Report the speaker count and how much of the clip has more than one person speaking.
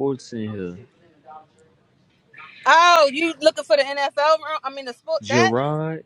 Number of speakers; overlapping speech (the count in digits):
2, about 5%